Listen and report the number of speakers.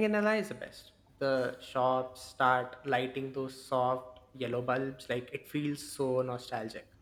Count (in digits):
1